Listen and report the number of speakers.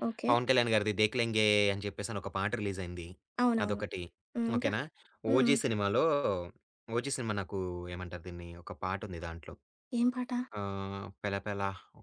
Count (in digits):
2